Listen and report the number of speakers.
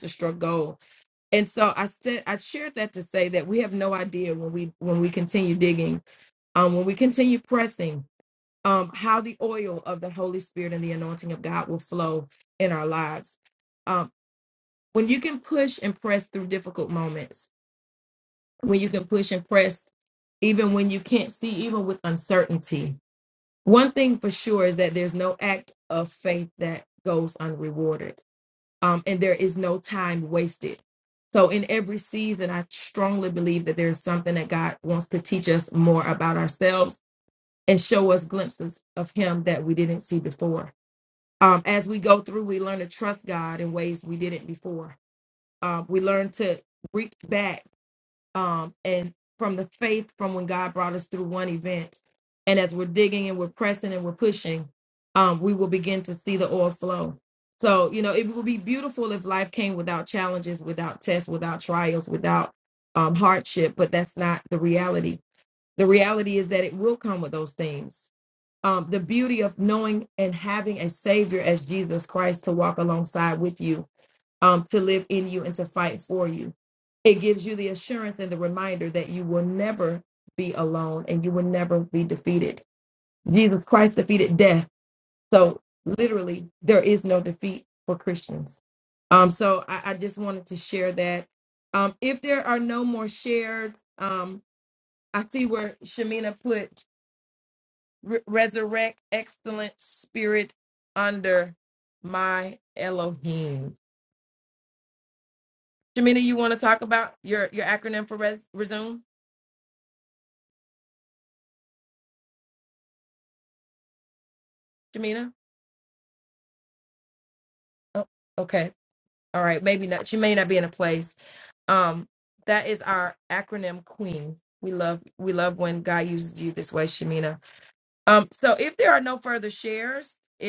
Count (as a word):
one